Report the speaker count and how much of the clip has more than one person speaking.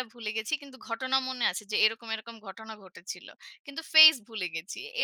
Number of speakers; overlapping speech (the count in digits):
1, no overlap